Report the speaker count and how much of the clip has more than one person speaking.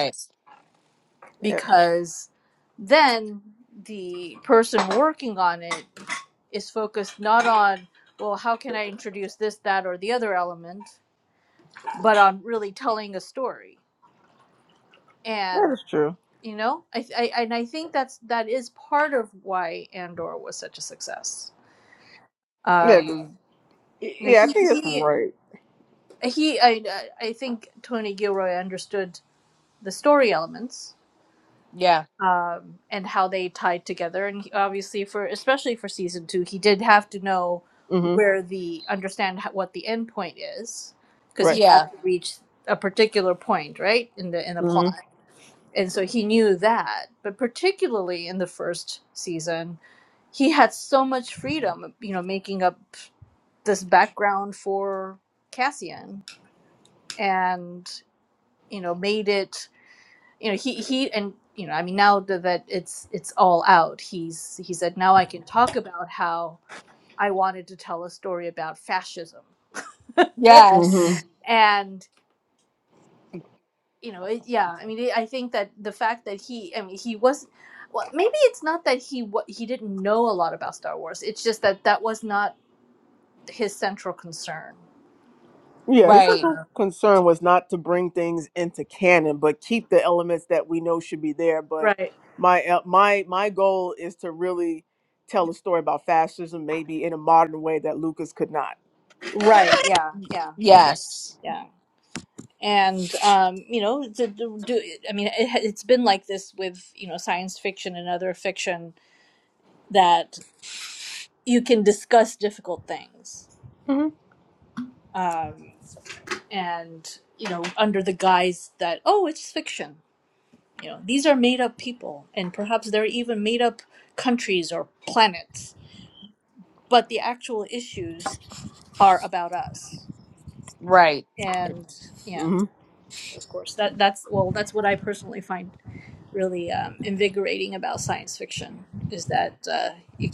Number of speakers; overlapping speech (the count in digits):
3, about 2%